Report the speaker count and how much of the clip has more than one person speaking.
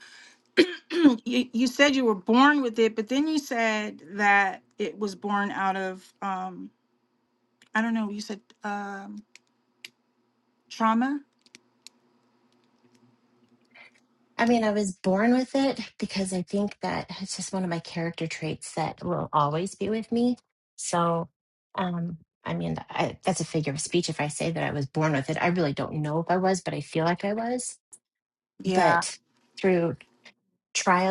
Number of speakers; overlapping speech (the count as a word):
two, about 1%